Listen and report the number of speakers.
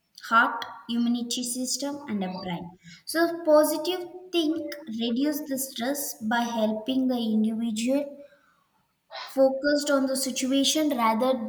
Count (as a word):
one